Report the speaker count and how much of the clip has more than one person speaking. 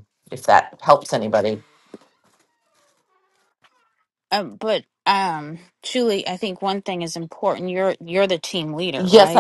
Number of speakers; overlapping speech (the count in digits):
2, about 4%